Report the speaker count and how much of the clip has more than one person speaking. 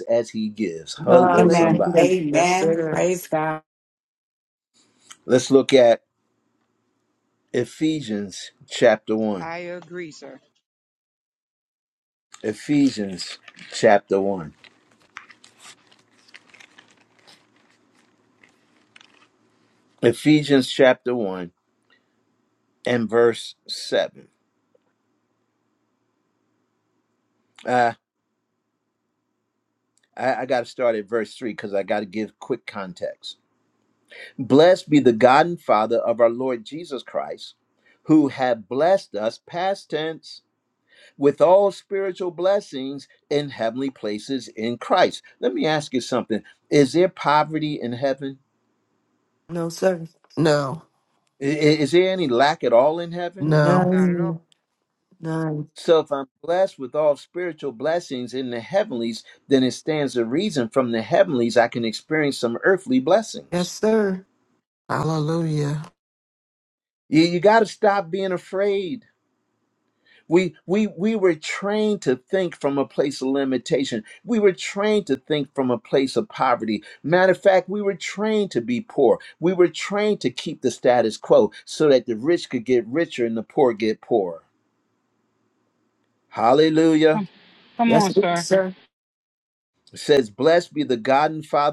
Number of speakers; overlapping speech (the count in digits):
5, about 4%